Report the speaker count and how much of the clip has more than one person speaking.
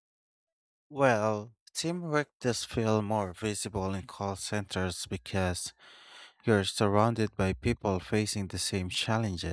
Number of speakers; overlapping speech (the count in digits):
1, no overlap